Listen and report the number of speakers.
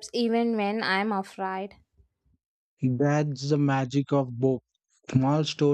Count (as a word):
two